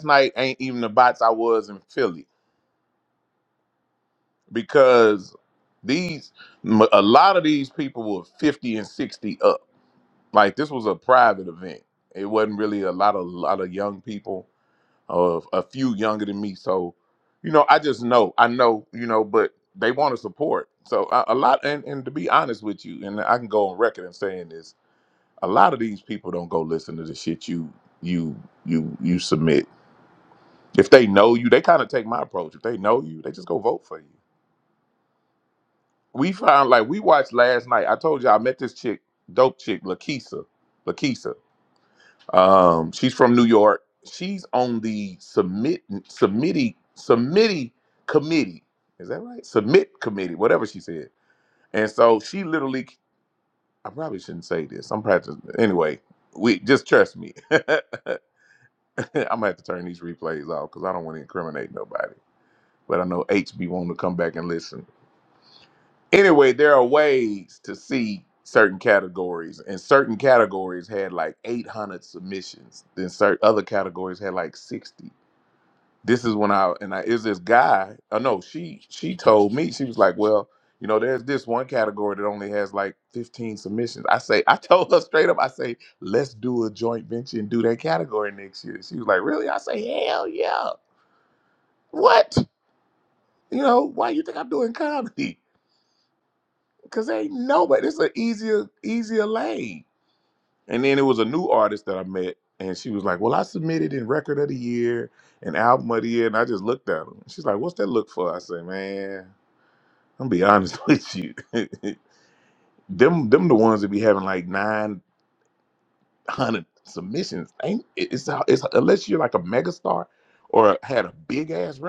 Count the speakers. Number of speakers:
one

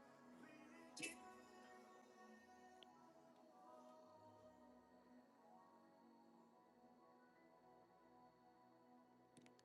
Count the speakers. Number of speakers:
zero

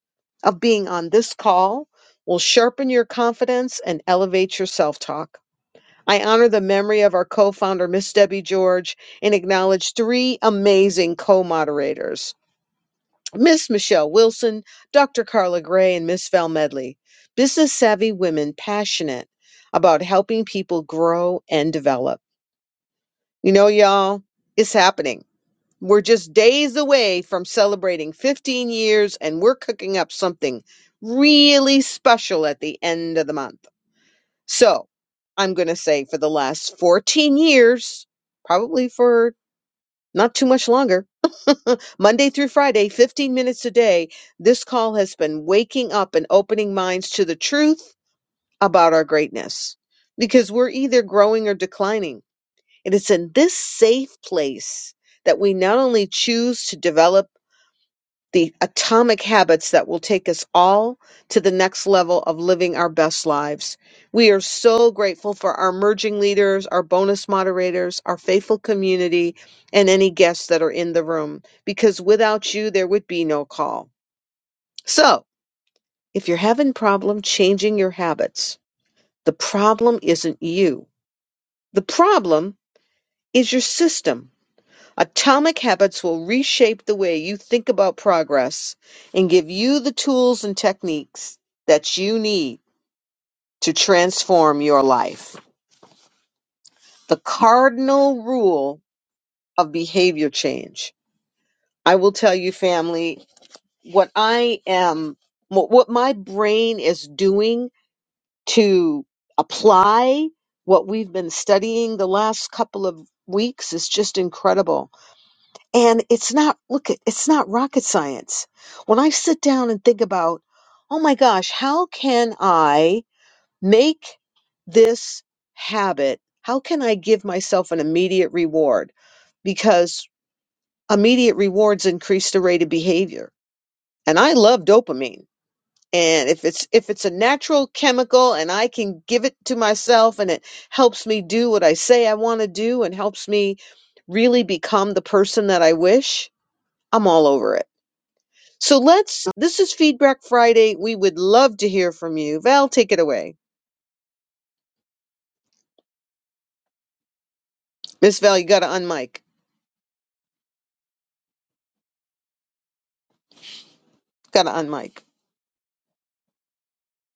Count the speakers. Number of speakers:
one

